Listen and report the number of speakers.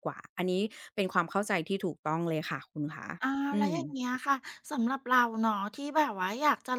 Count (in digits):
2